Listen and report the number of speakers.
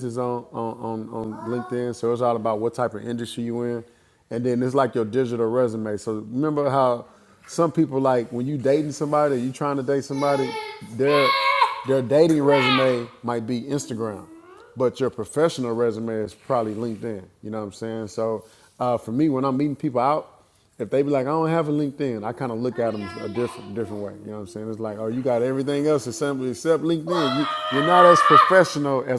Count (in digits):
1